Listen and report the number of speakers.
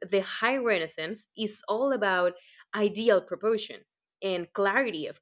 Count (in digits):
1